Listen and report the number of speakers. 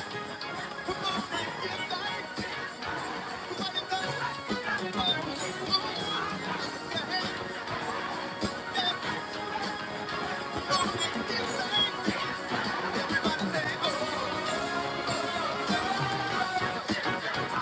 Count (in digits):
0